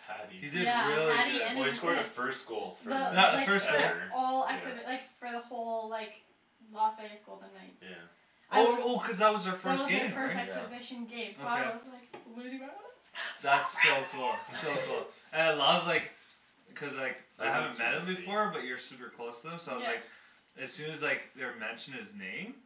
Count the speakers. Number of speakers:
three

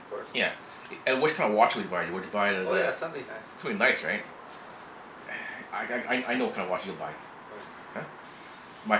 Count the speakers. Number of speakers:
two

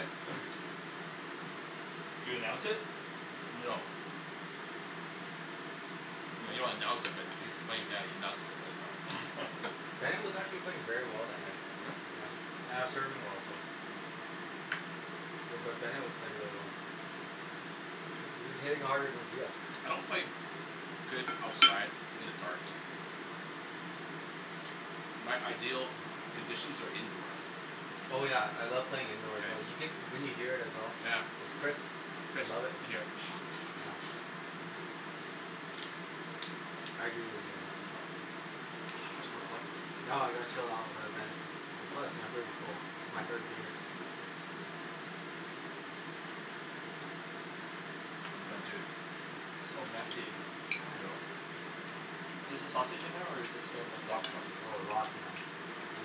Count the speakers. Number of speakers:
three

